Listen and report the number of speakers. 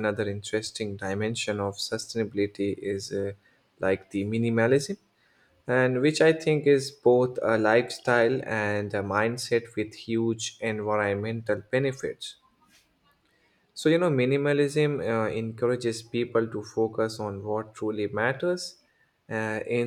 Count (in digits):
1